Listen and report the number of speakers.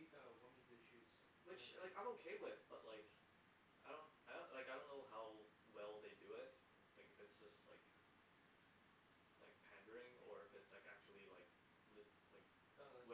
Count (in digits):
2